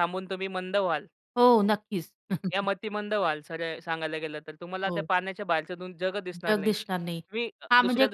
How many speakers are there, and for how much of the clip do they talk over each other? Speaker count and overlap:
two, about 11%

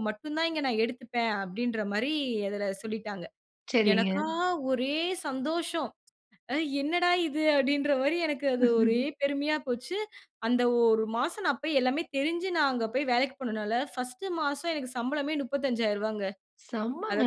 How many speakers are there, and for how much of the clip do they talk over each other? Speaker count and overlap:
two, about 3%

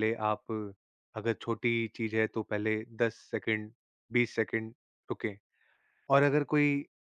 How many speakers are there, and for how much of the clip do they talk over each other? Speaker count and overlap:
one, no overlap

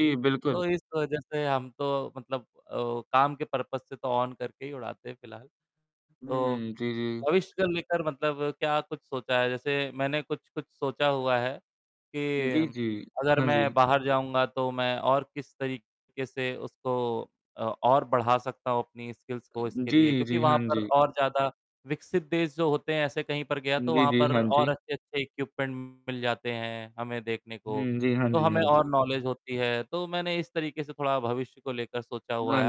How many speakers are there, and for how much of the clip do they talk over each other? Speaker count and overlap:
two, about 13%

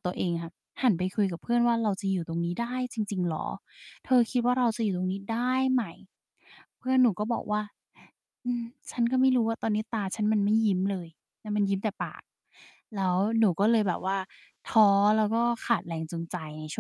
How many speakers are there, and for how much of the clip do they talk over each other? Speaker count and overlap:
one, no overlap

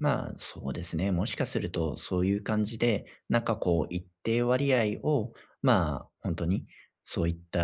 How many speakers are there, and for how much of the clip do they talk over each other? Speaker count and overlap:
one, no overlap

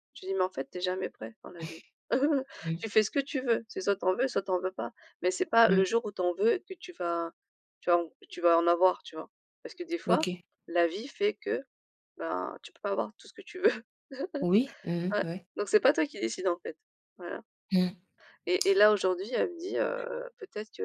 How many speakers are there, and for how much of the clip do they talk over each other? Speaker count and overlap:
two, about 2%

